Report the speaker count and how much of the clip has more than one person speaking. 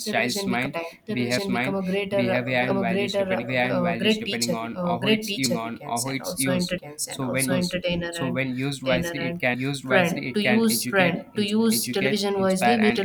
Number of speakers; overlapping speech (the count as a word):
two, about 87%